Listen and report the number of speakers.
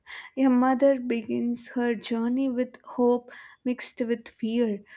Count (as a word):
one